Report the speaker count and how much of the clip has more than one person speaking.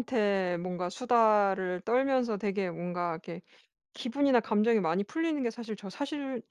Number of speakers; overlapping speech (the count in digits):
1, no overlap